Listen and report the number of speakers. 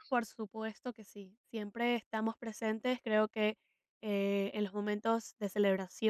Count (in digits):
1